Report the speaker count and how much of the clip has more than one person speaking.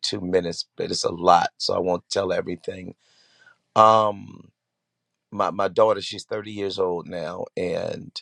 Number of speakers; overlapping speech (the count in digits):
1, no overlap